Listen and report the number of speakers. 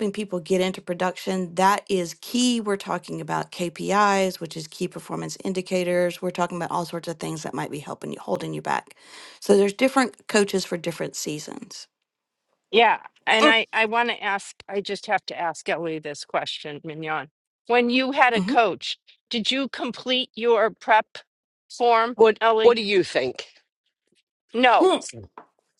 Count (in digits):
3